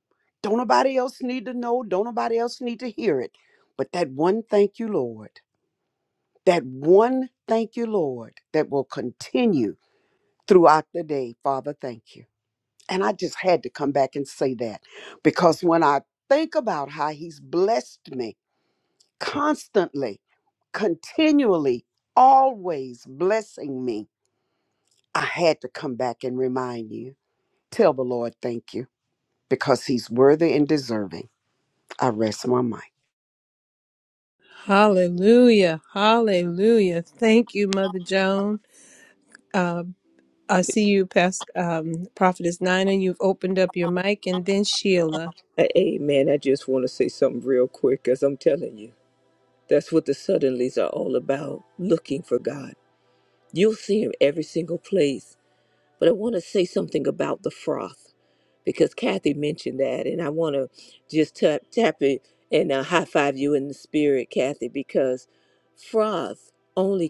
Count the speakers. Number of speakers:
3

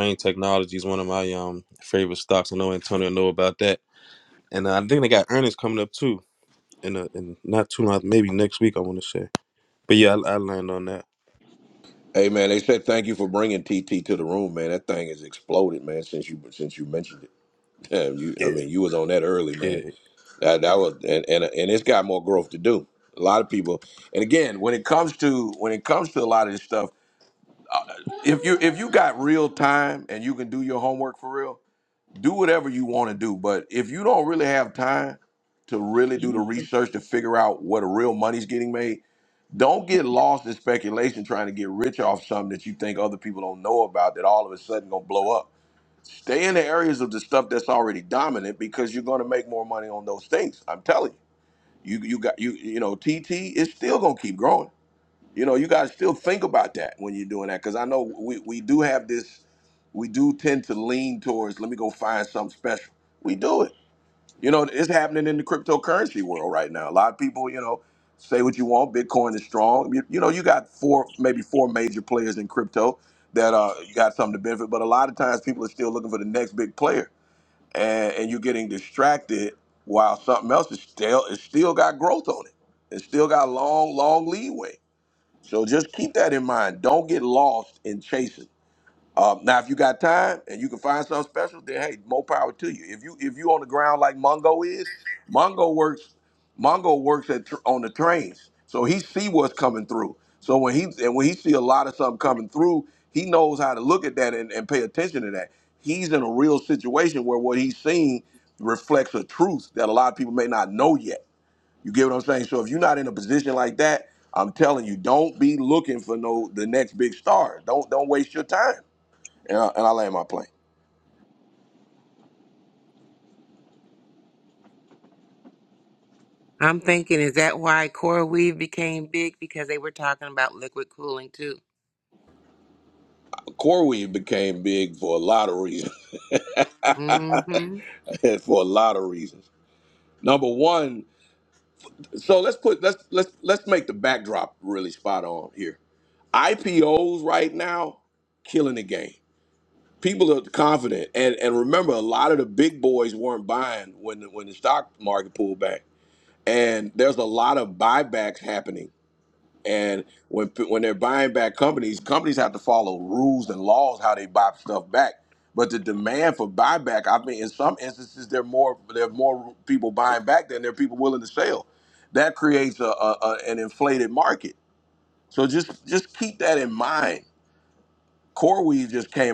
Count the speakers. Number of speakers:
3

